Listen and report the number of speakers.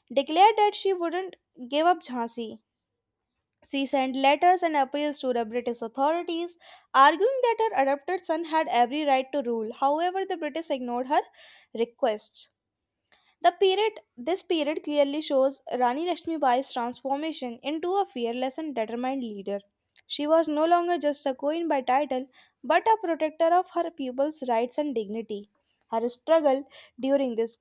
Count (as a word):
one